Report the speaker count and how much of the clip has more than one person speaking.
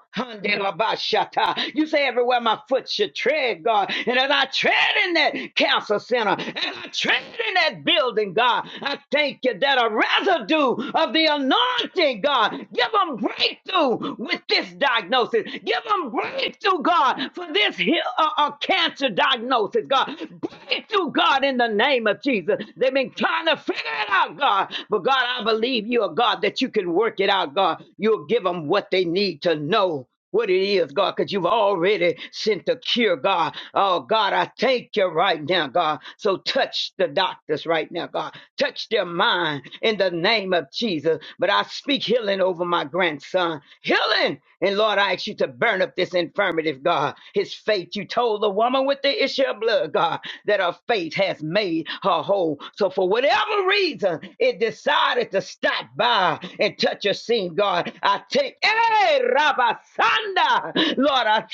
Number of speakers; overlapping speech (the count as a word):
one, no overlap